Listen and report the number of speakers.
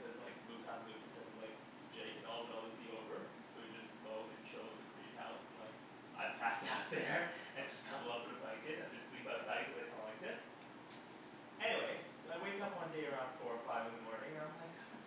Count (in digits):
1